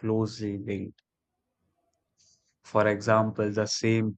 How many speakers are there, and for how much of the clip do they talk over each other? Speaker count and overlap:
one, no overlap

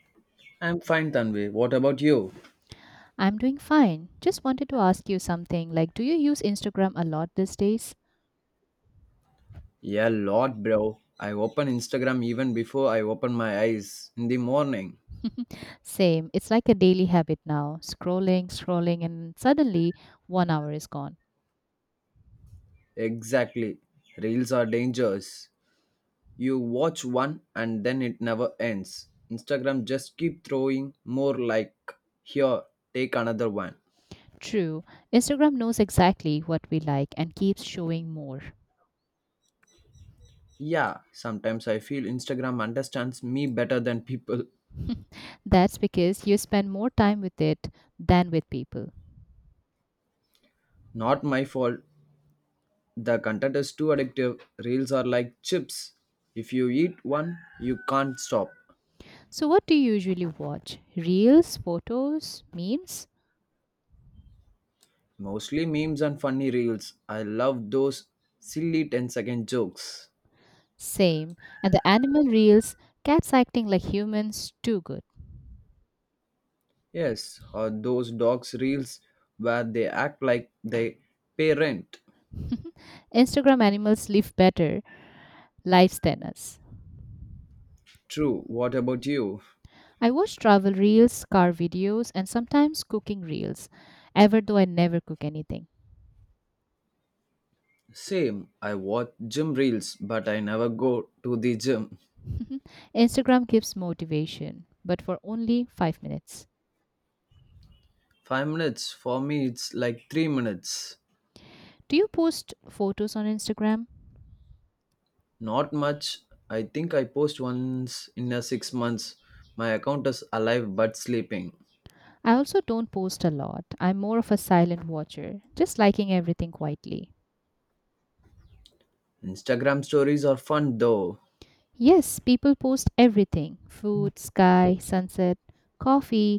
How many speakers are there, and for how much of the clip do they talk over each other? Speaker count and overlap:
two, no overlap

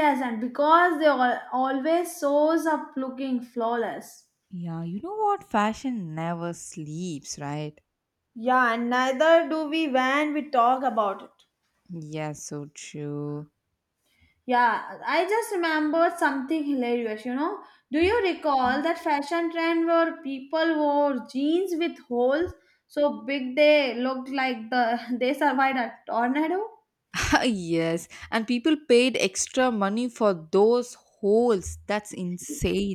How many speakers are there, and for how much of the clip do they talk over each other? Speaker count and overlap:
two, no overlap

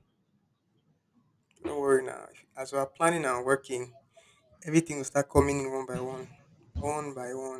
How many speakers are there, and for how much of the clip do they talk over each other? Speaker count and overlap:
one, no overlap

